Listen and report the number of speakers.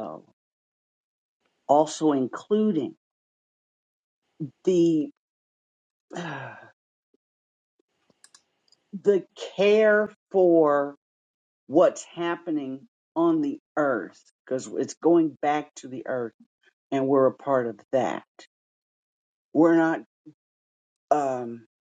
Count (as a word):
one